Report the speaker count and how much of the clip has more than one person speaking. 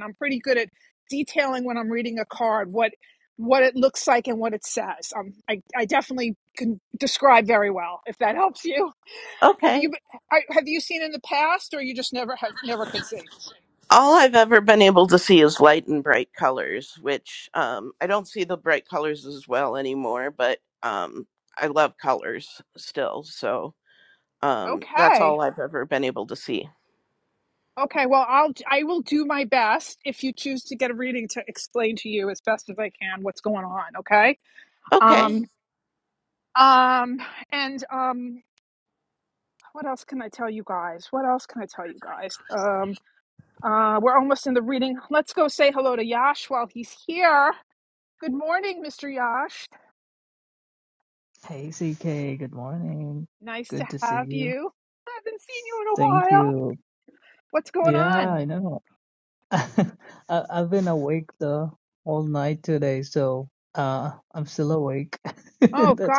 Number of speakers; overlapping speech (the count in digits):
3, about 6%